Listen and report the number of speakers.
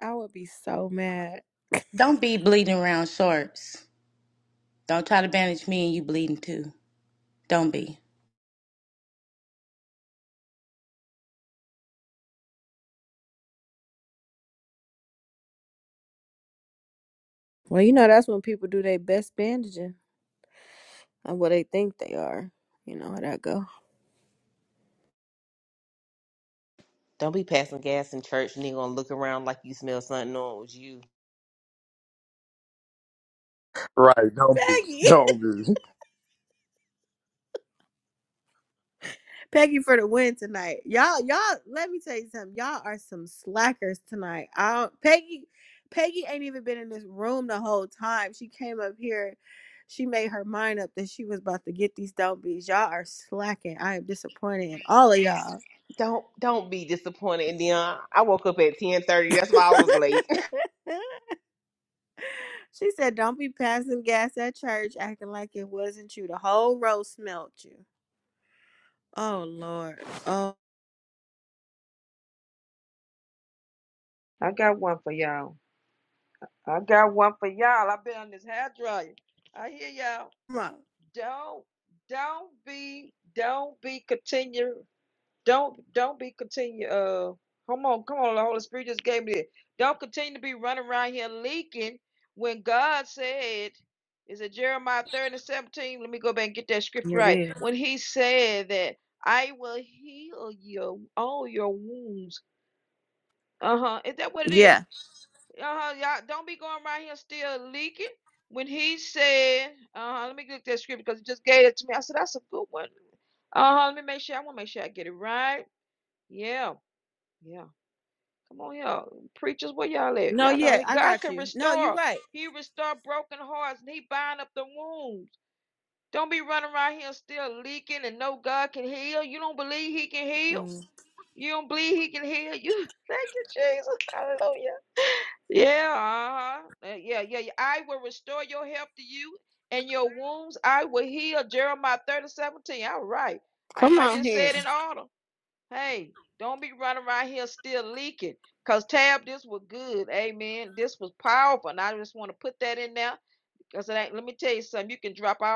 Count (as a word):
five